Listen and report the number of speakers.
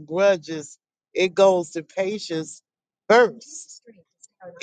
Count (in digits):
1